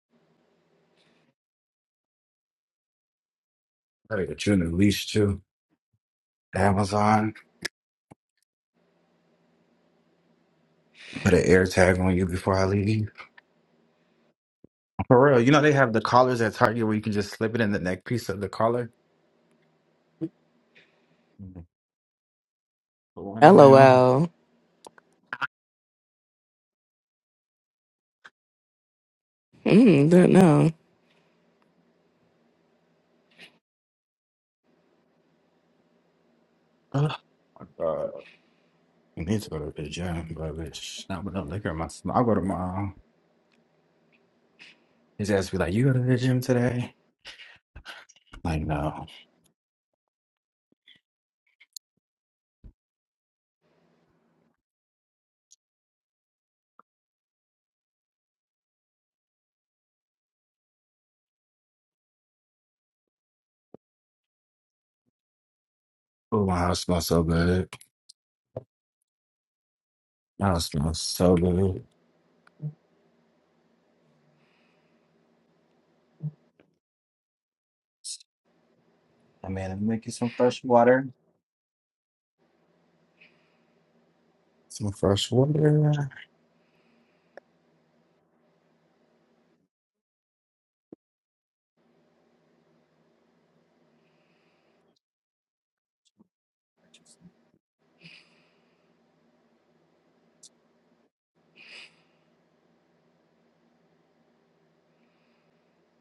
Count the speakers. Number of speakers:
two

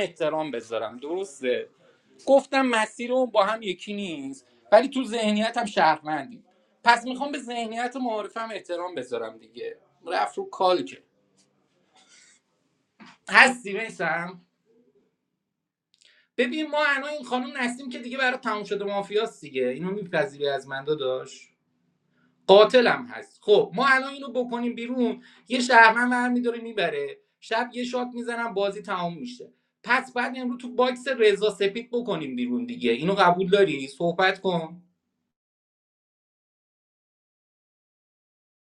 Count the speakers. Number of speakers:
one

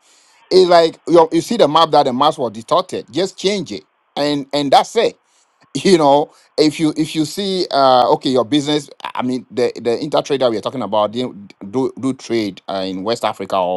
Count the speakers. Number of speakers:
one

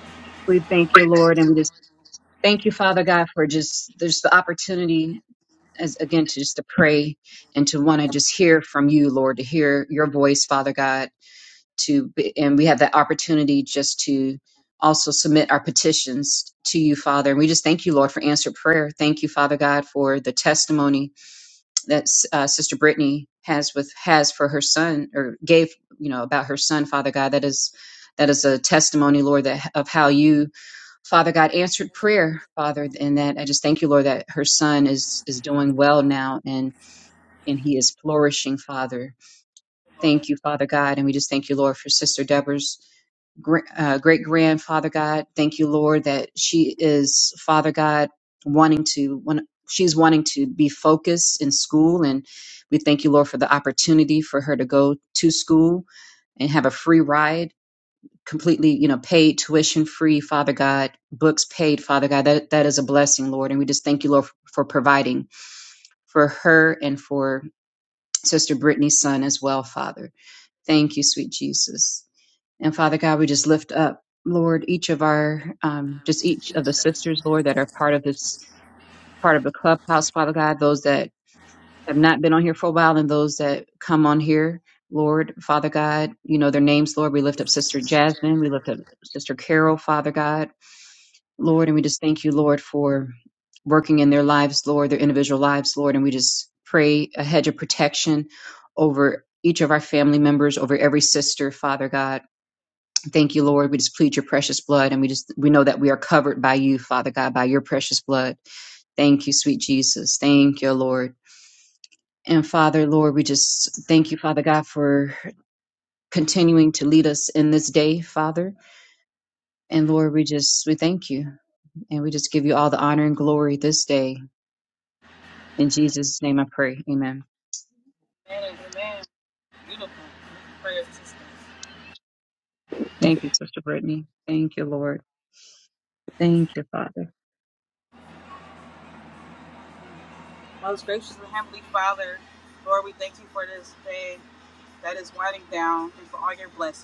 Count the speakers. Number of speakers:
two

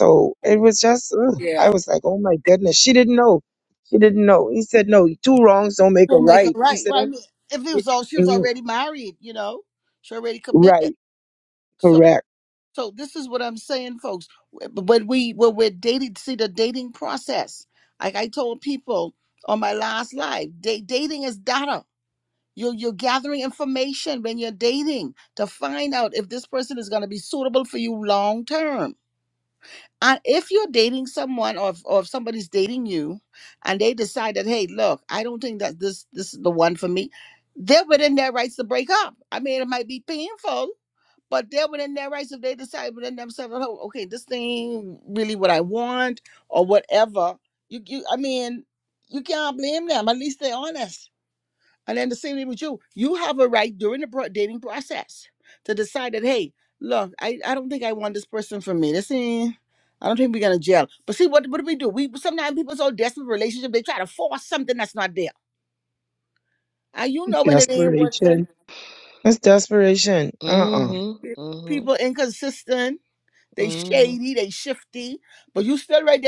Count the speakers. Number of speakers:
three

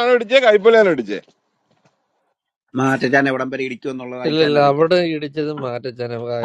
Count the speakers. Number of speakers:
three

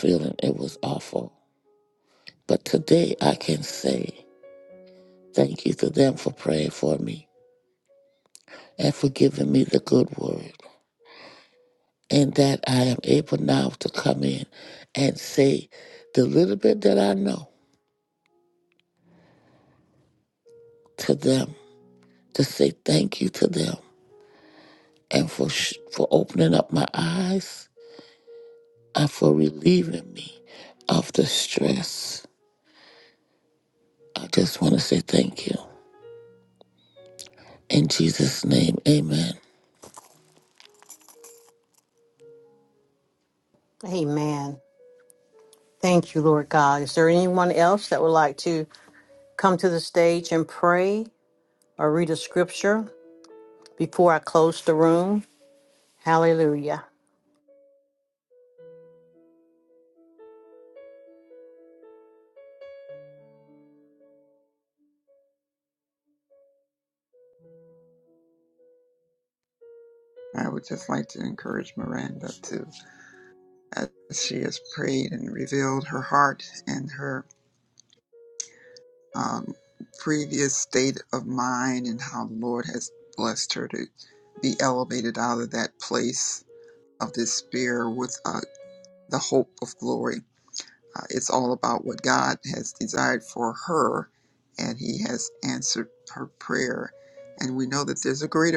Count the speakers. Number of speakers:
three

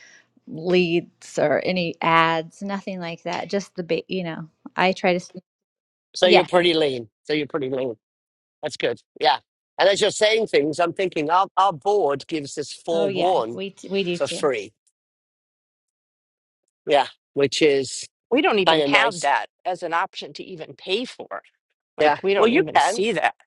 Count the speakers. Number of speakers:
three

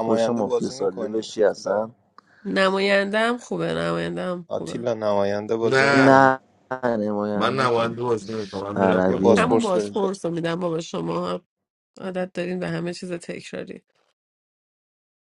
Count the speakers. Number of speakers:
four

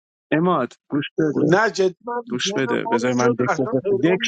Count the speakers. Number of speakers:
two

